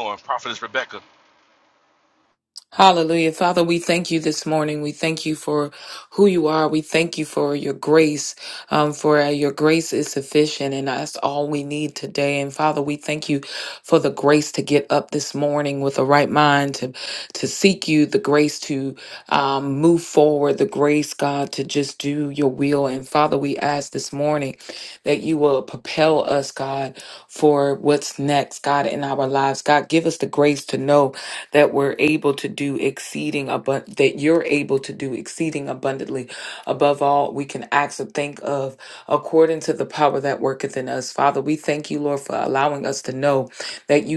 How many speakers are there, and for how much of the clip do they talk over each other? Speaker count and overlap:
2, no overlap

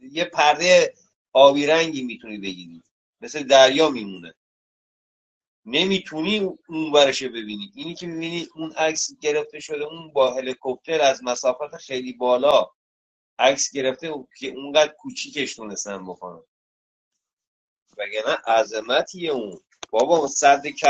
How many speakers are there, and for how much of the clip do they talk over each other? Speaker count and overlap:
1, no overlap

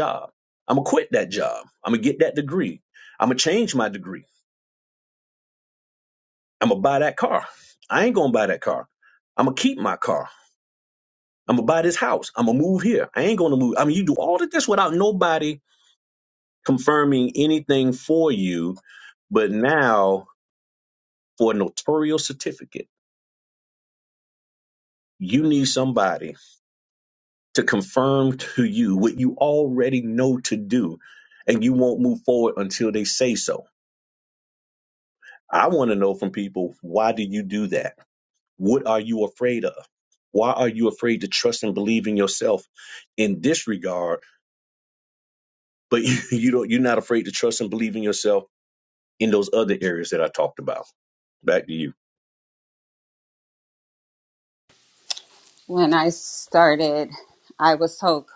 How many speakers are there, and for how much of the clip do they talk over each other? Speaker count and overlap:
2, no overlap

